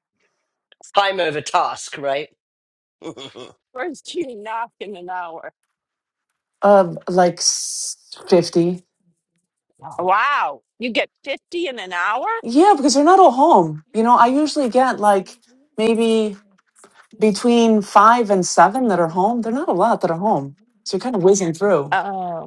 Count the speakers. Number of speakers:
three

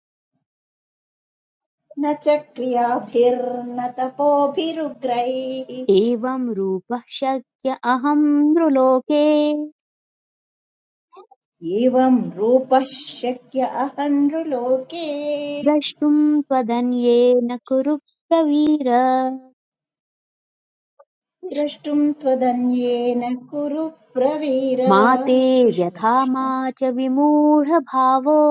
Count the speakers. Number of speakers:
two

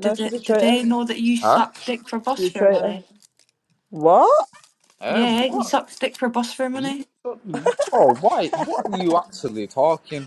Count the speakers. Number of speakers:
three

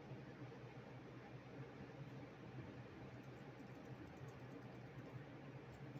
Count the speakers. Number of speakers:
zero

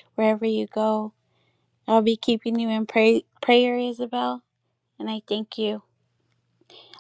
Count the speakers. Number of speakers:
one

